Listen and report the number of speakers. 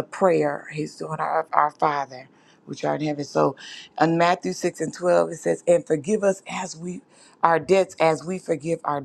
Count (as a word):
one